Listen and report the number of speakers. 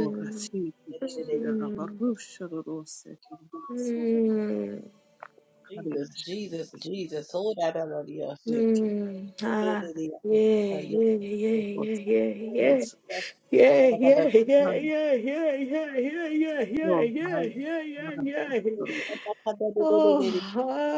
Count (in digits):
3